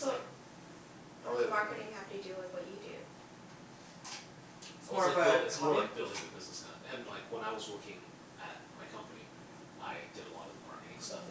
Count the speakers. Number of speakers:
two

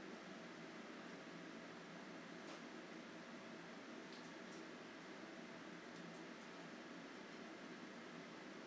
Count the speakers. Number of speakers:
zero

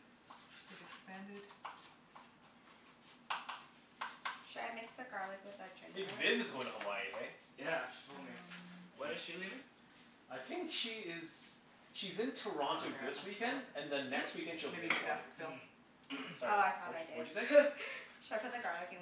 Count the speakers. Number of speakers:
four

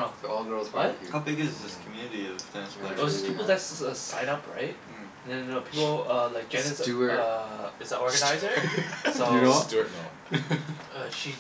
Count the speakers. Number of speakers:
four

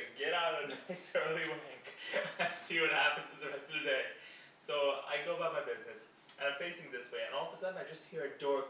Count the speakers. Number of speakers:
one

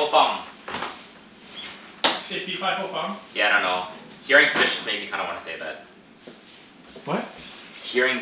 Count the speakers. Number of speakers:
two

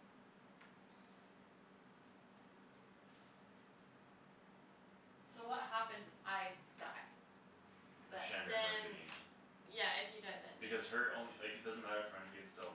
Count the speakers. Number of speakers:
three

